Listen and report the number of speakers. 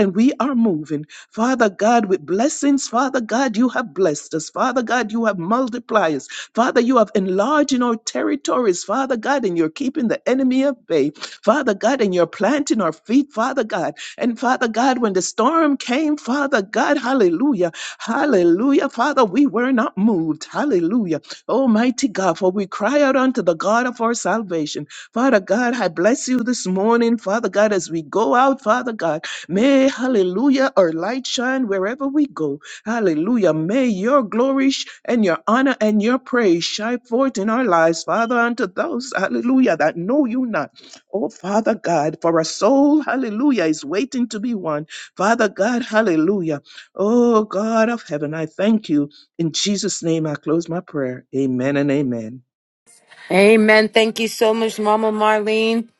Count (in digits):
2